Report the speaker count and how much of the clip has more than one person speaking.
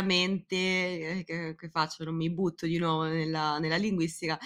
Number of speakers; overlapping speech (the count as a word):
one, no overlap